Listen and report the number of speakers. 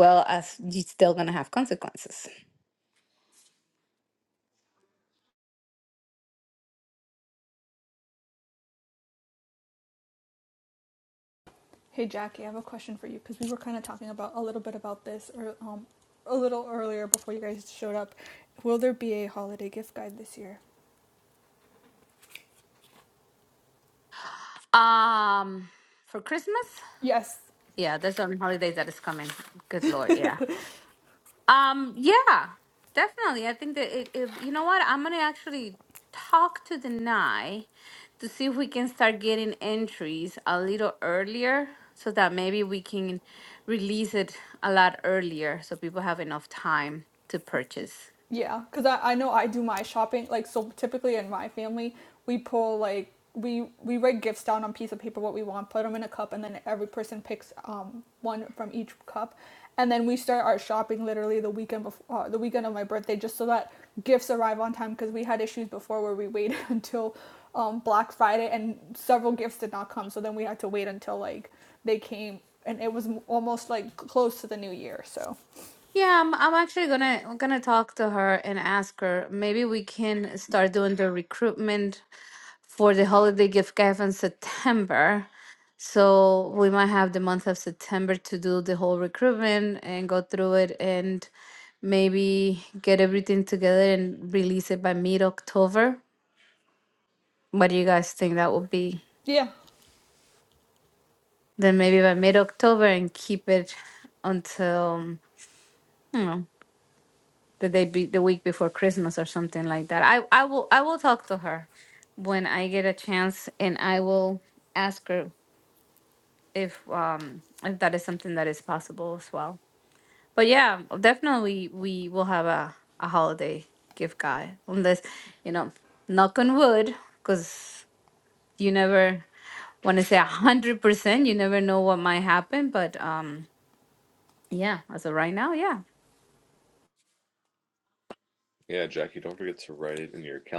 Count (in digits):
3